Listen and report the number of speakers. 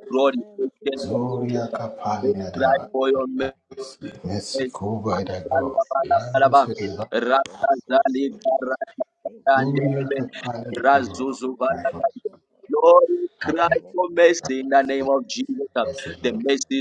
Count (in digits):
3